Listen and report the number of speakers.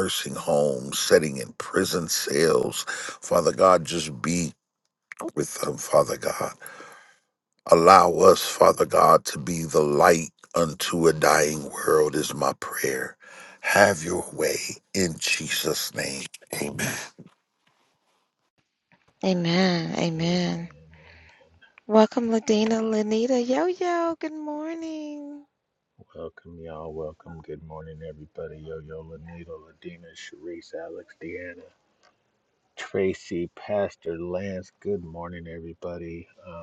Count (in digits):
3